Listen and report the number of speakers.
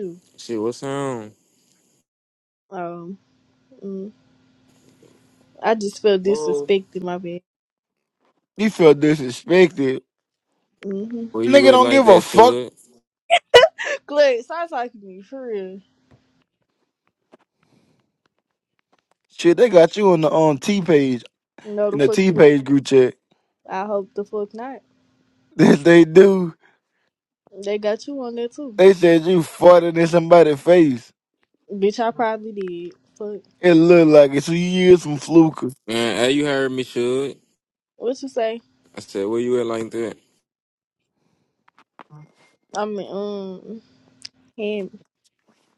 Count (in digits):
3